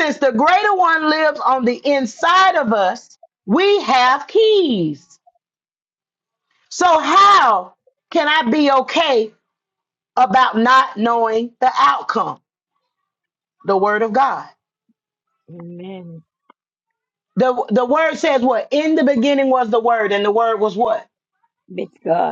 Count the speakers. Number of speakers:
two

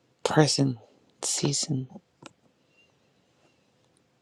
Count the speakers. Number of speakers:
one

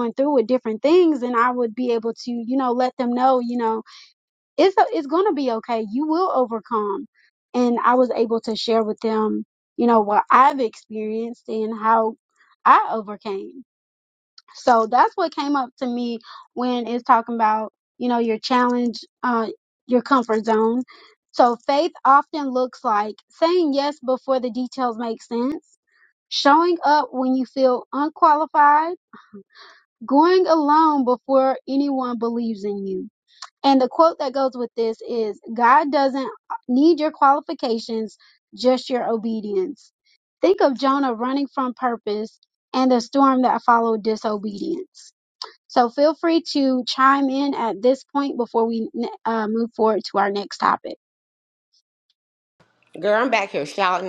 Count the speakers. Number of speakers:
two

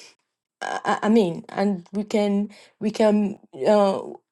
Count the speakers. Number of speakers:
one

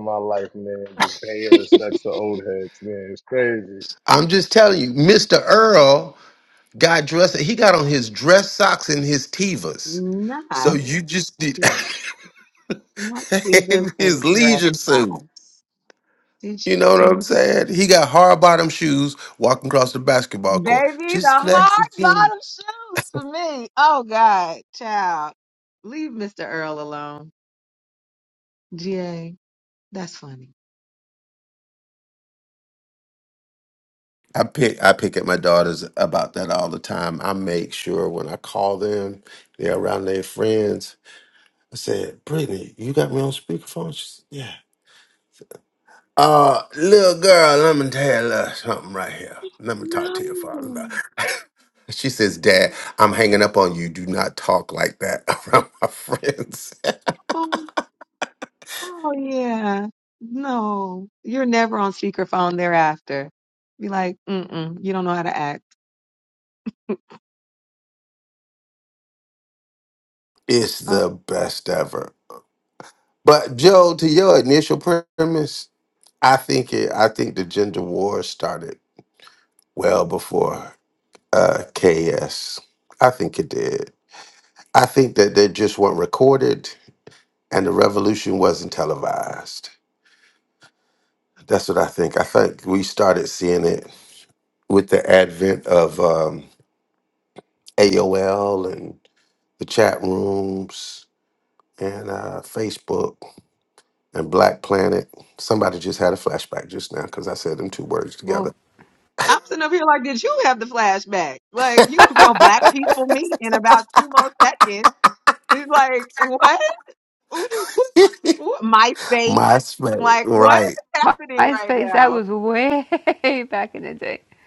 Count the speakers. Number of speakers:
four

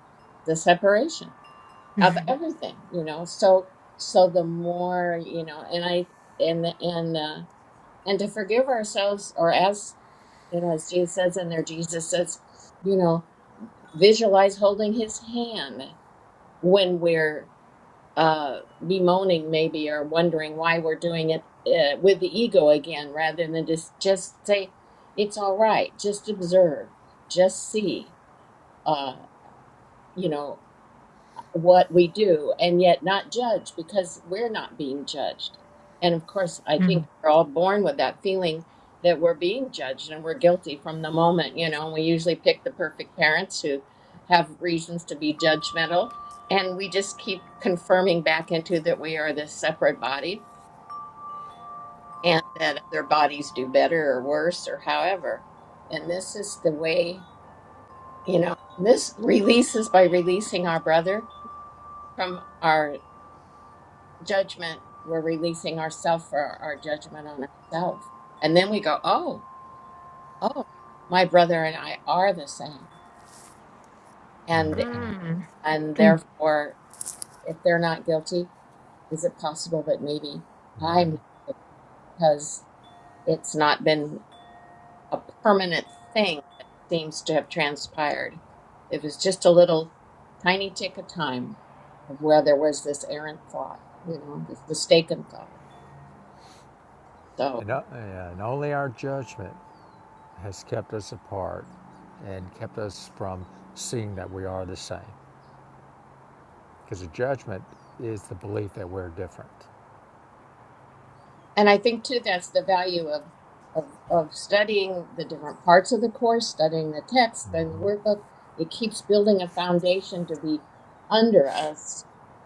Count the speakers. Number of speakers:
three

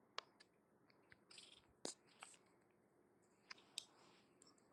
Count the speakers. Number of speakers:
zero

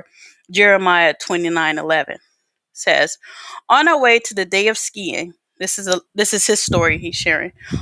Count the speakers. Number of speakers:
one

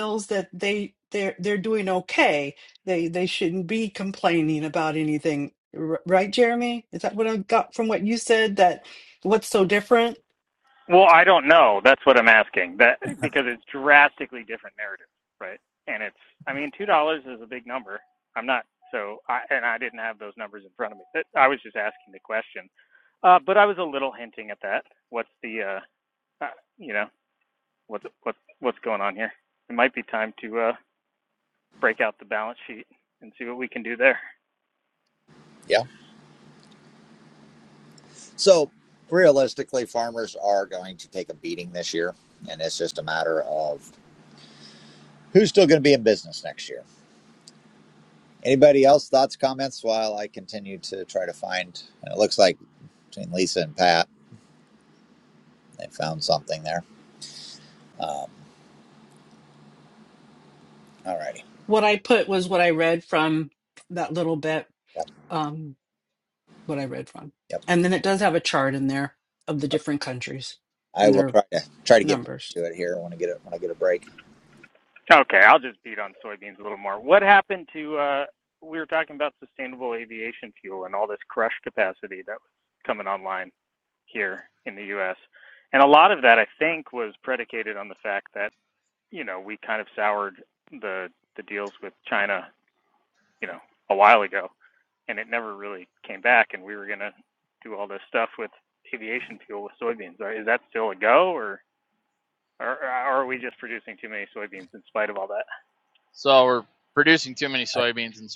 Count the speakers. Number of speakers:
four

